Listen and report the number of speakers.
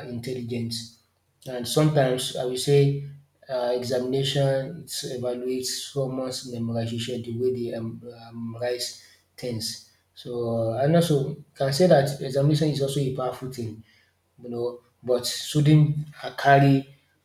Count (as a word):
one